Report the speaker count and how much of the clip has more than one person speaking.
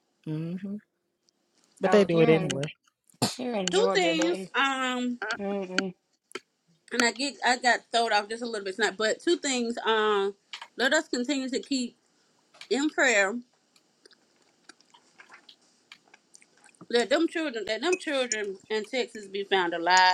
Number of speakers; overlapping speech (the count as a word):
three, about 7%